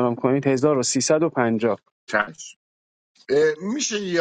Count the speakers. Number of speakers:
2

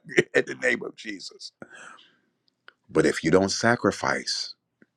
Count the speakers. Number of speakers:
1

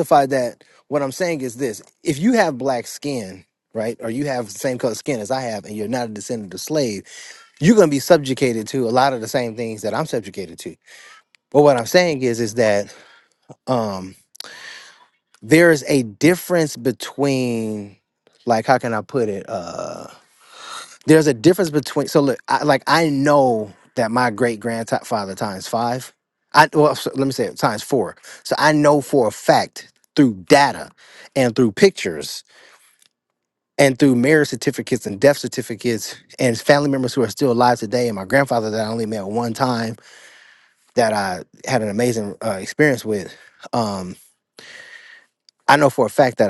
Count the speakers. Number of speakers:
1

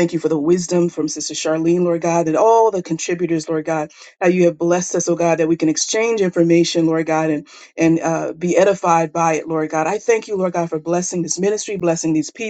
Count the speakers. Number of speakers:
1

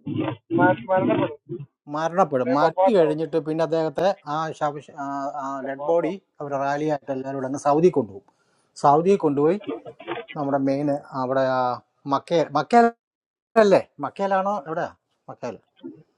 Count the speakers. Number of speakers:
2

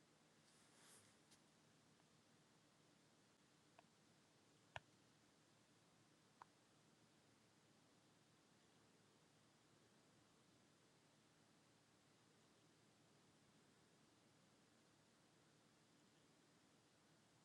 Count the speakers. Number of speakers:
0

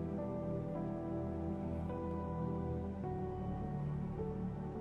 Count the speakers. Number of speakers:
0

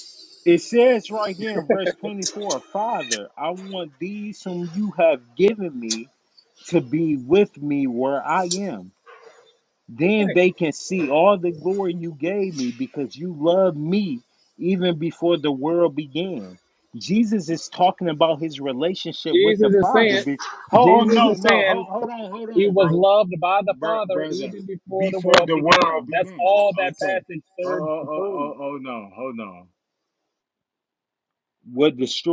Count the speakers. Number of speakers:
2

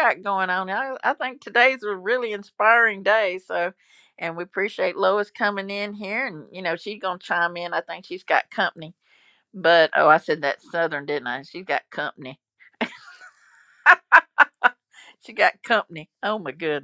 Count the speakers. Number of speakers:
1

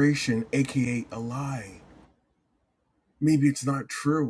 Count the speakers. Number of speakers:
1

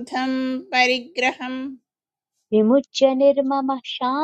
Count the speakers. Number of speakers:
2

